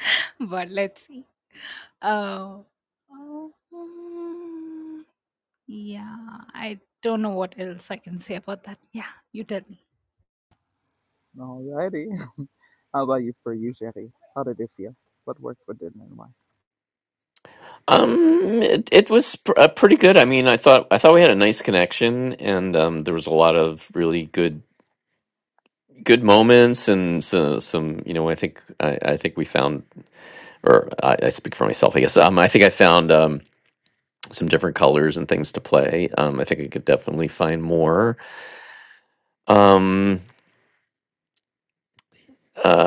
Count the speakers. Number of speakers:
three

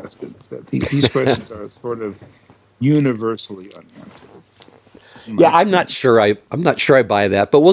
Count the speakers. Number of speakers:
two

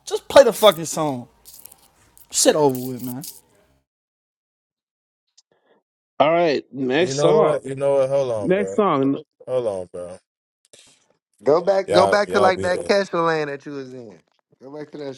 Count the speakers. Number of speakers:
four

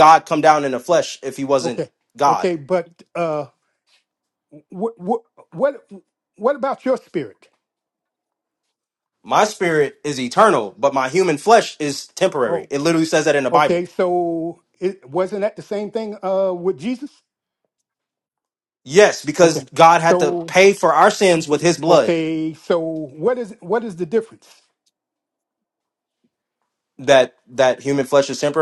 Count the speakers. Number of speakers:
two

